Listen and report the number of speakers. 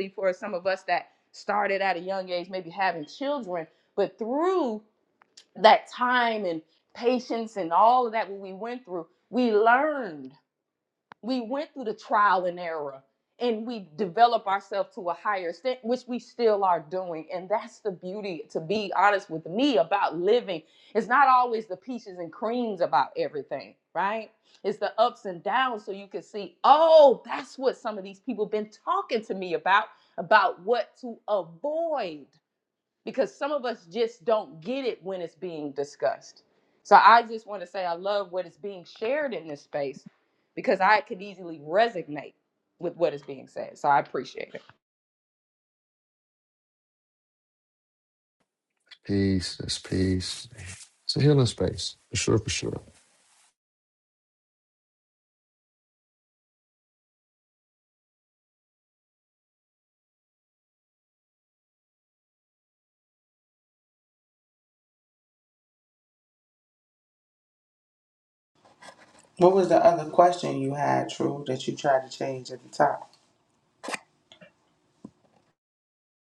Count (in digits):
3